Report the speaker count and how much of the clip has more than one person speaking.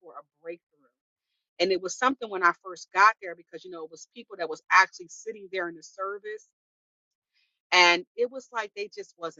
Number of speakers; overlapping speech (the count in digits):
1, no overlap